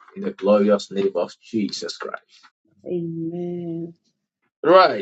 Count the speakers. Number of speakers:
two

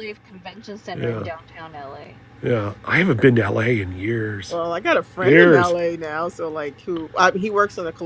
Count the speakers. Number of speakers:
three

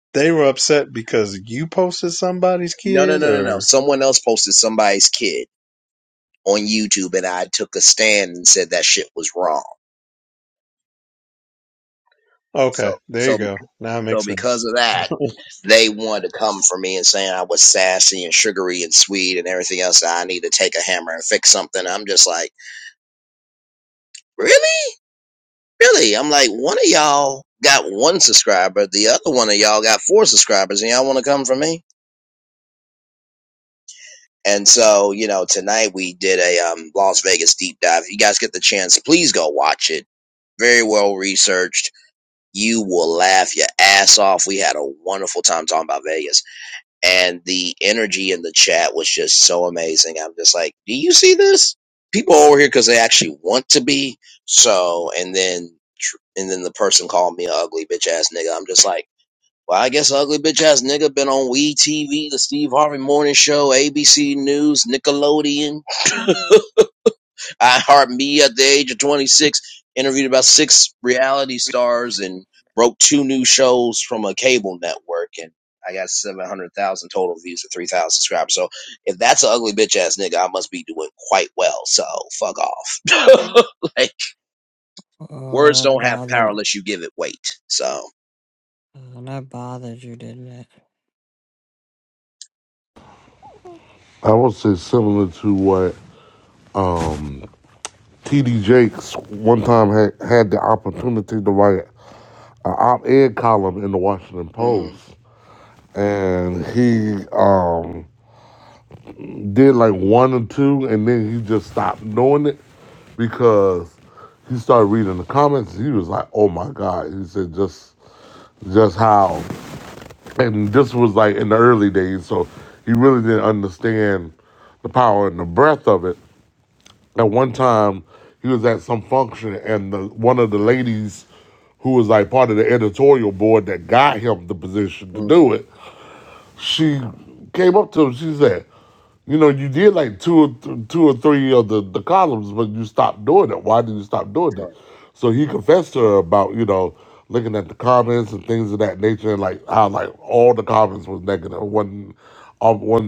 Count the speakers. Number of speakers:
four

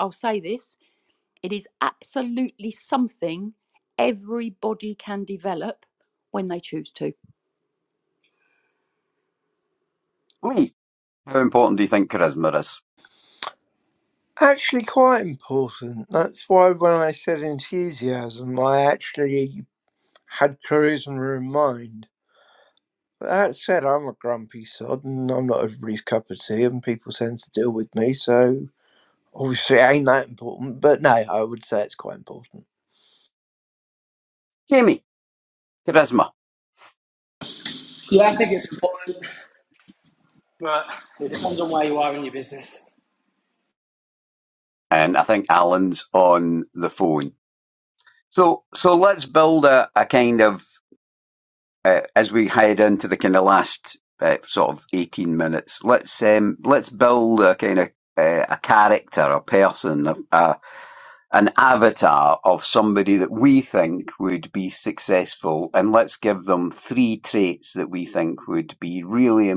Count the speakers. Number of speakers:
four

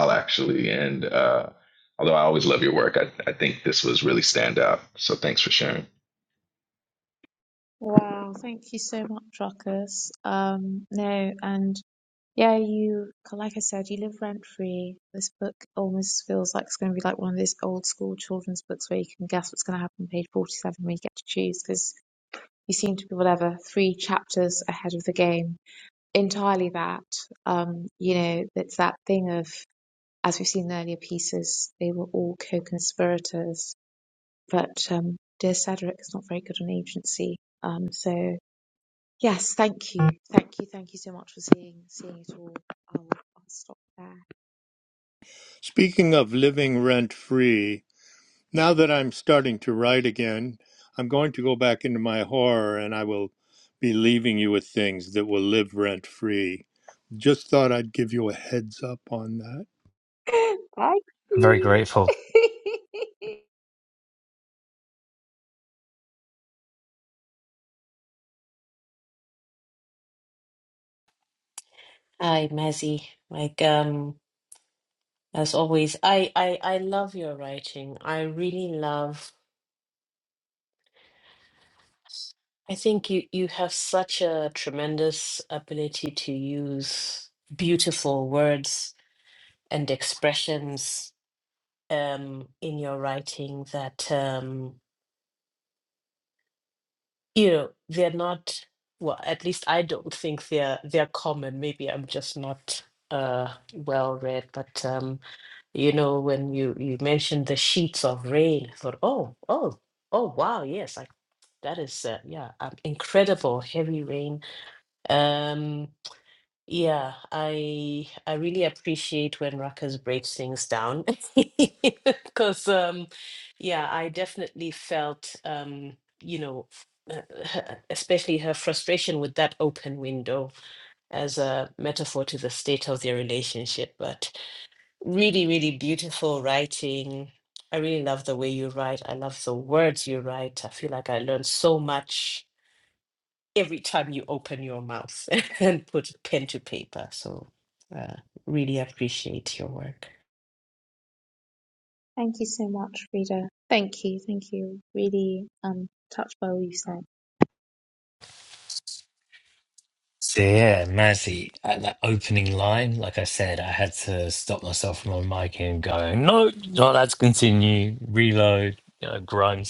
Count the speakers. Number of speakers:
five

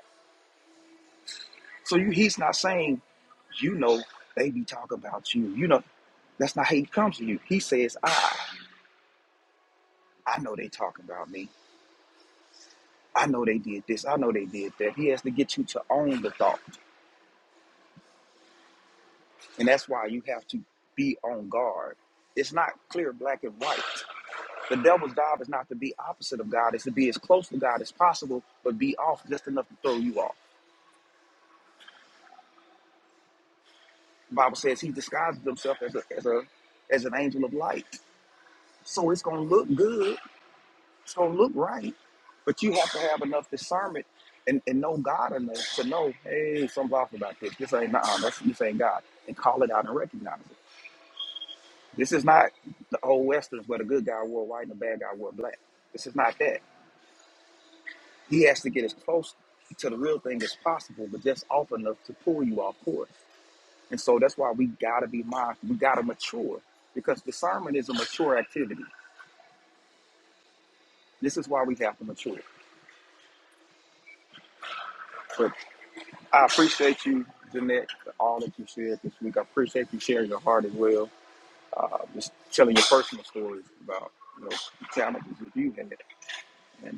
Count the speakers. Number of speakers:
one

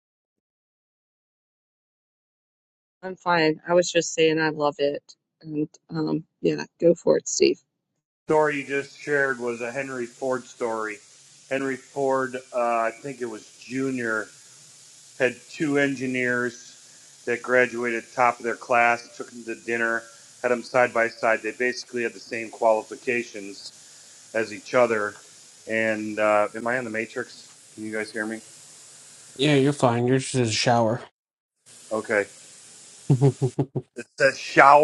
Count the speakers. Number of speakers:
three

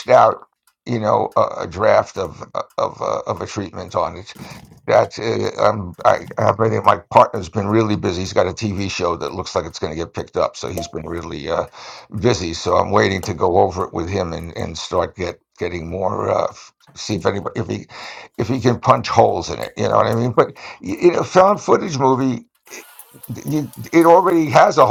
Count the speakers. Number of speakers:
one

